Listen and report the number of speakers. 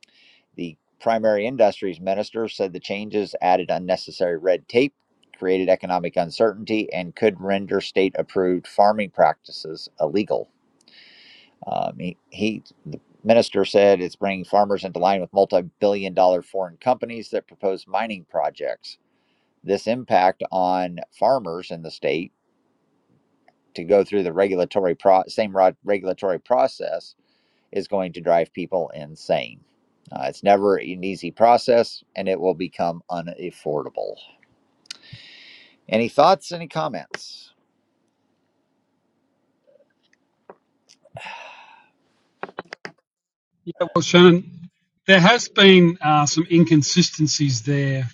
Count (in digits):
2